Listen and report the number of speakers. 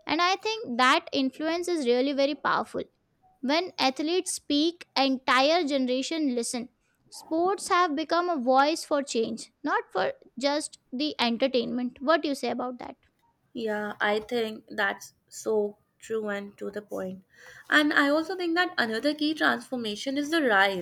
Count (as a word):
two